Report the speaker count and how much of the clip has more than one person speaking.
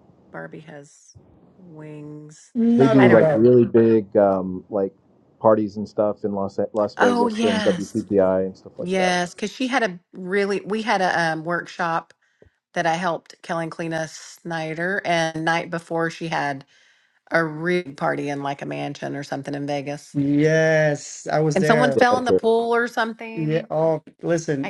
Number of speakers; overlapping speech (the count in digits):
3, about 13%